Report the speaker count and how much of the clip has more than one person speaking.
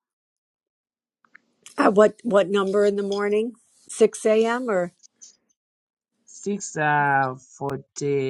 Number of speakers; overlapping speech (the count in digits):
2, no overlap